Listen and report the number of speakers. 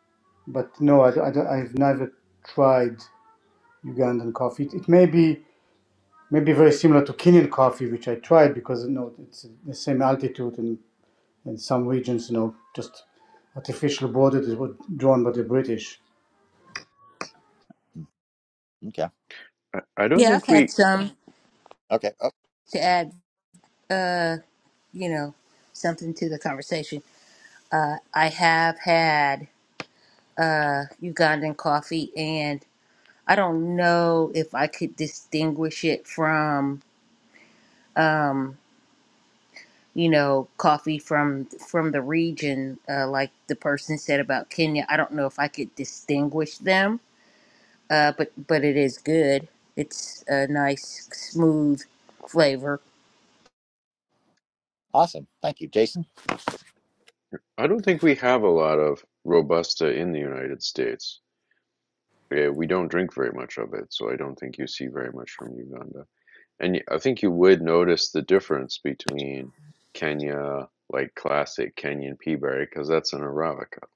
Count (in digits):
4